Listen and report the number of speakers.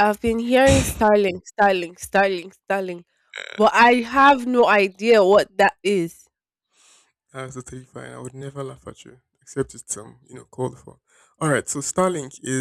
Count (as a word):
two